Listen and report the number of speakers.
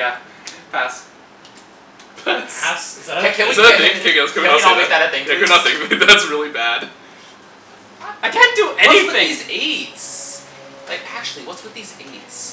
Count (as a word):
four